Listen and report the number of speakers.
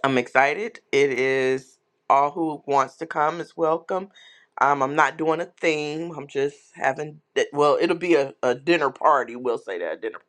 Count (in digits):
1